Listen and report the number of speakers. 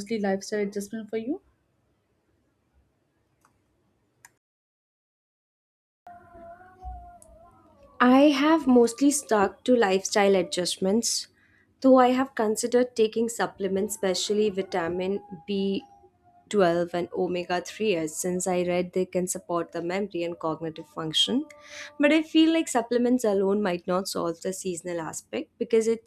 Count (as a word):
two